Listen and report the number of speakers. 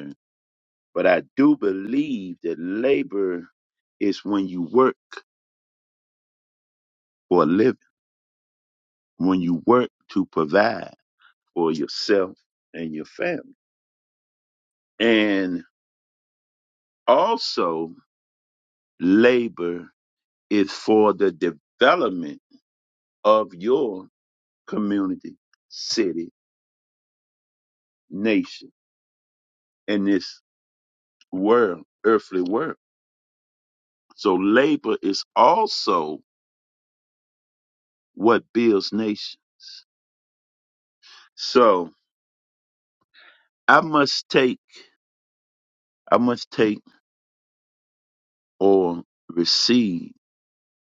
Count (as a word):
one